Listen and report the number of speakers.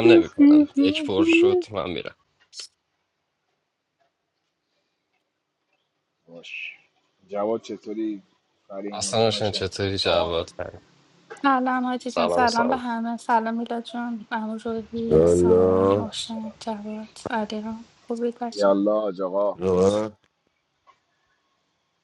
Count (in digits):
4